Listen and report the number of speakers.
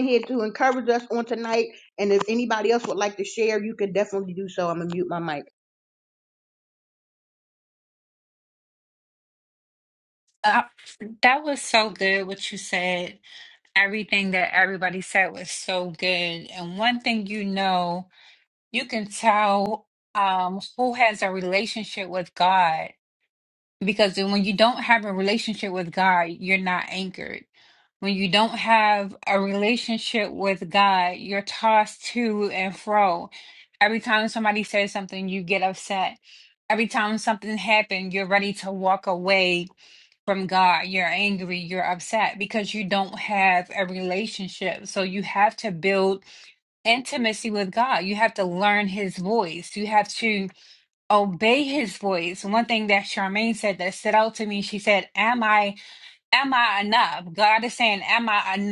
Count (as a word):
two